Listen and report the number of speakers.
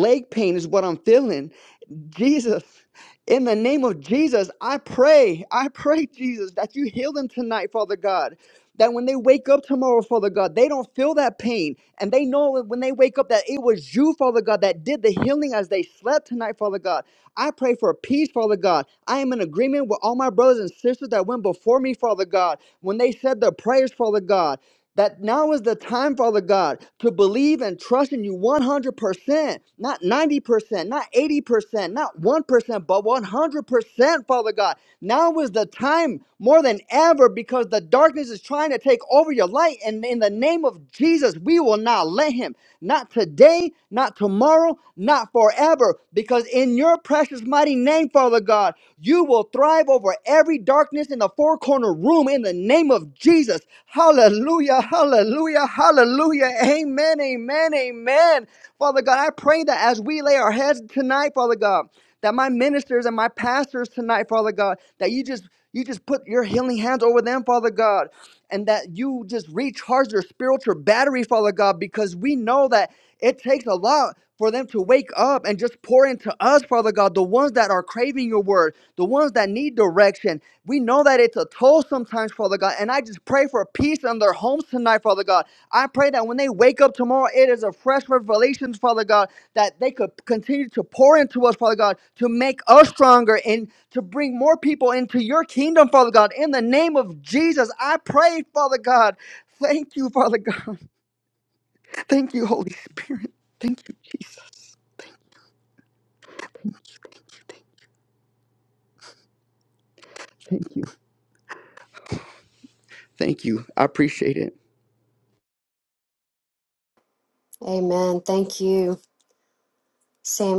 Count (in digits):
2